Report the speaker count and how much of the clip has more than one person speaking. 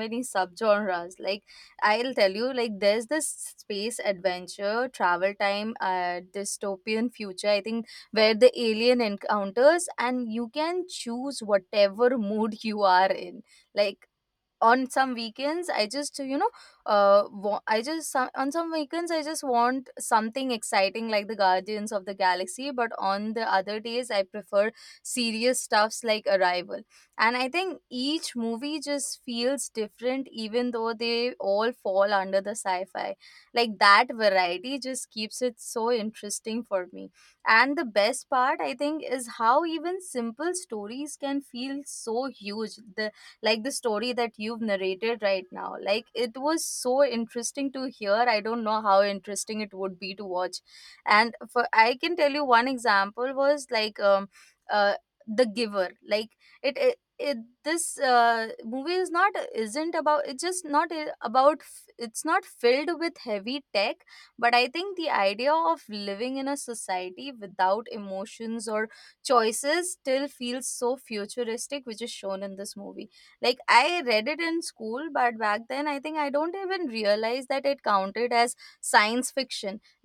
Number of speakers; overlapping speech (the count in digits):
1, no overlap